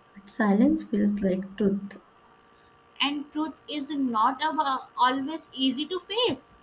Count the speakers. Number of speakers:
two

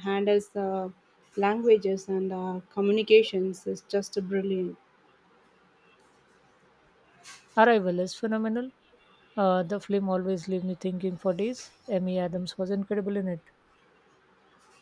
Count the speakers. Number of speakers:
two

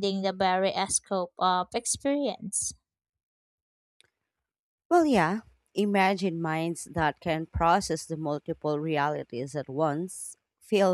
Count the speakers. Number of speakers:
two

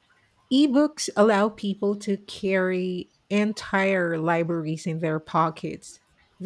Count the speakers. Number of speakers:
one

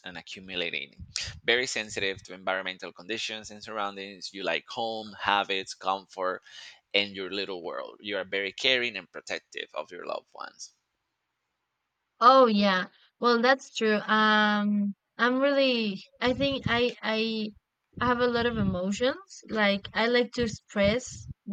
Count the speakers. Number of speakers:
two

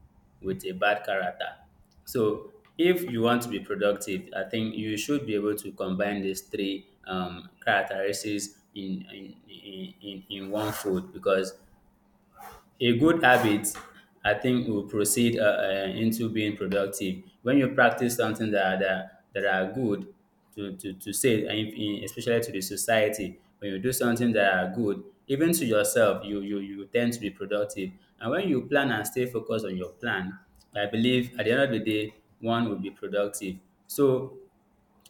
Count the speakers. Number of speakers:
one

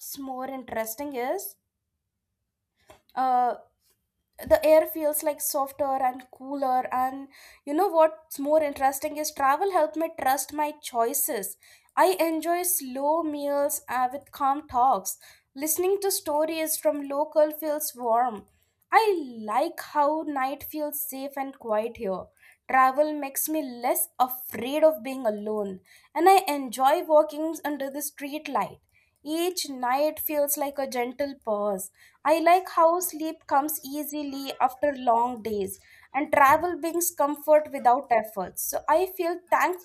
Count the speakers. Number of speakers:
one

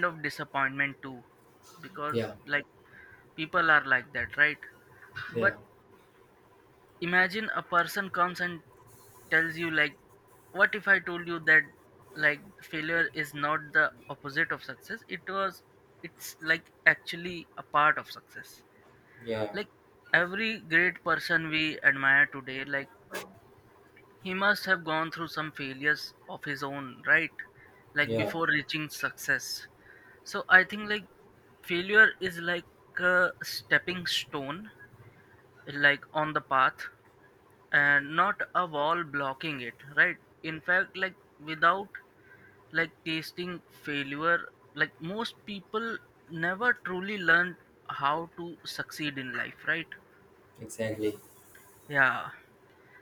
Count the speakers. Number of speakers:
two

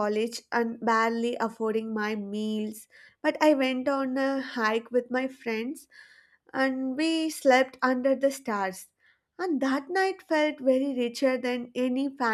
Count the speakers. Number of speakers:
one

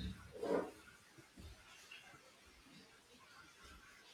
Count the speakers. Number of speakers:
zero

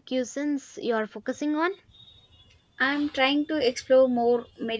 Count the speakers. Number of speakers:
two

